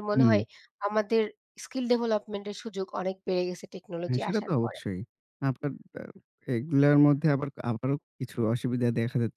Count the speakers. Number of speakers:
two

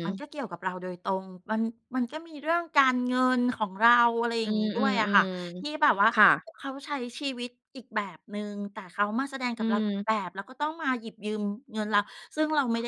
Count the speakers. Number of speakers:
two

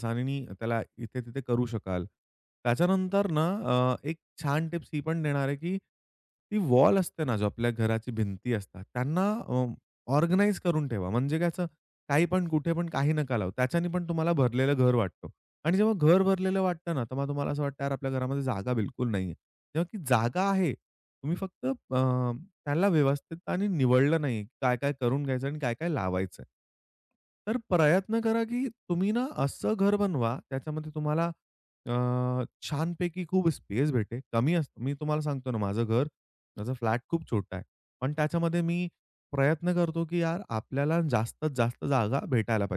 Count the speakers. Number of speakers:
one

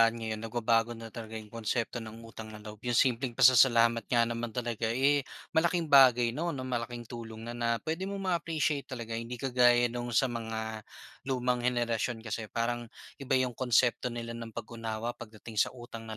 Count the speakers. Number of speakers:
one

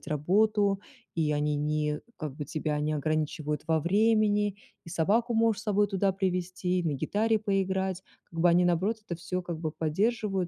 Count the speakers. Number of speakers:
one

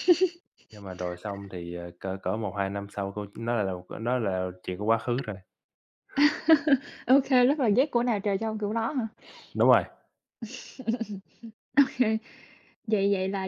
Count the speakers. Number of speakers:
two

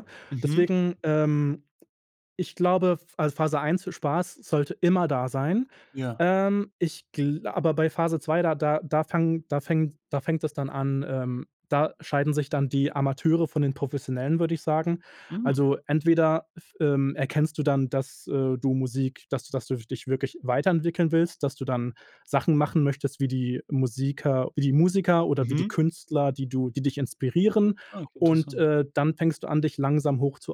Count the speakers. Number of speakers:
two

